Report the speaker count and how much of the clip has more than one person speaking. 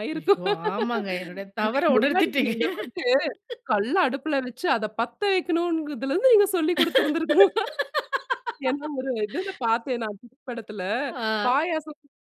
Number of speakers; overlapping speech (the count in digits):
2, about 12%